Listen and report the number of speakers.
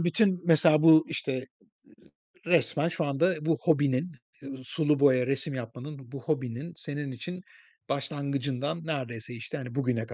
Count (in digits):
1